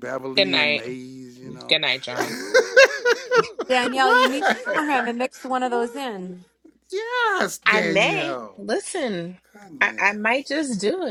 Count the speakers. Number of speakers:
3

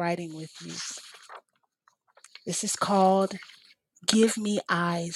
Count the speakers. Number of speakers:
1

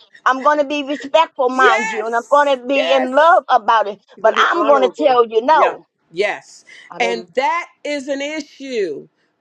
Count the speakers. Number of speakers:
2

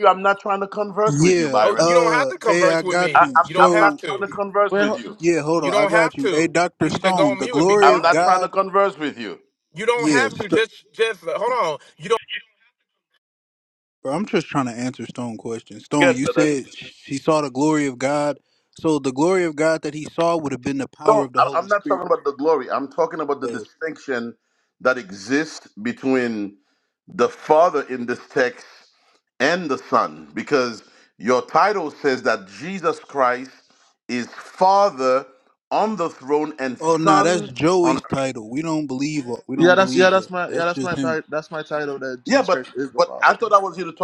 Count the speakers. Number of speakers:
4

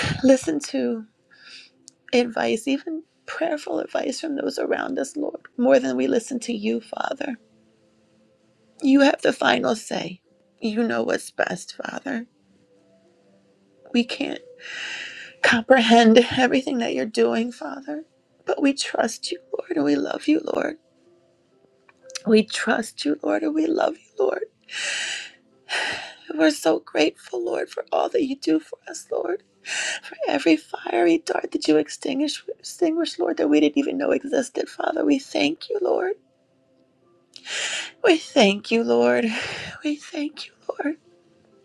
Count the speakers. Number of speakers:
1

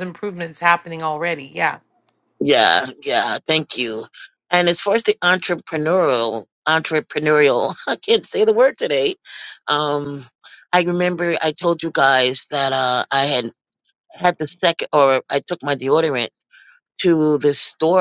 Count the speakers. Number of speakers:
2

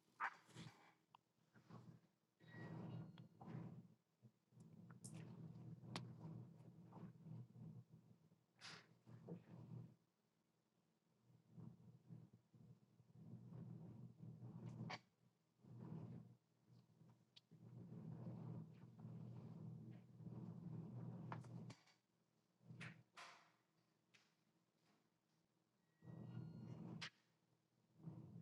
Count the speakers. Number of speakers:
0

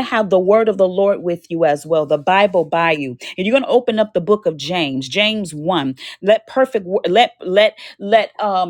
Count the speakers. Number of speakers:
1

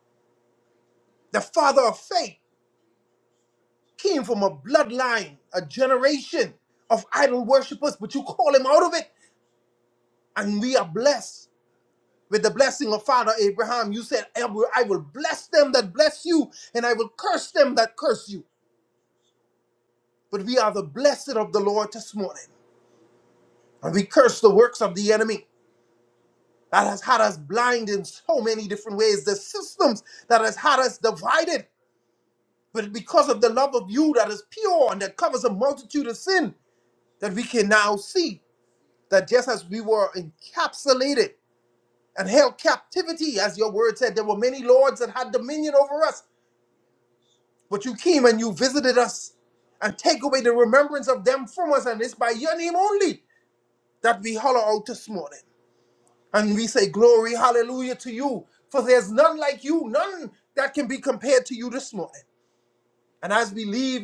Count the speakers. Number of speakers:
1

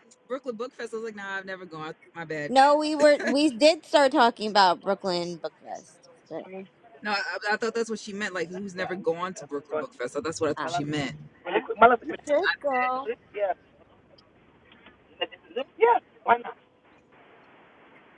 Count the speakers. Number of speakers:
3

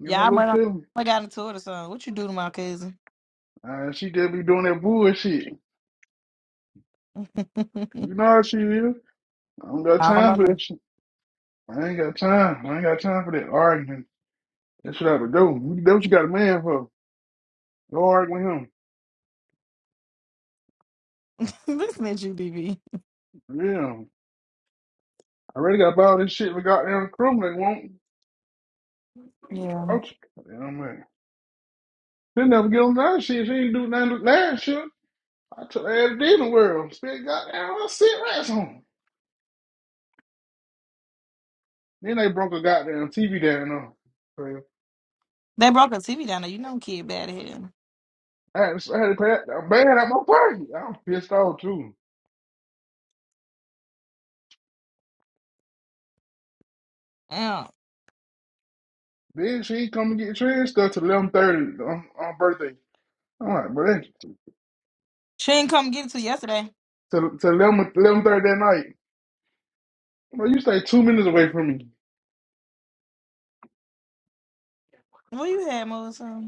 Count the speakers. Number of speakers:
2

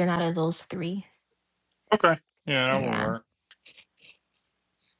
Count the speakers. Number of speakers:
2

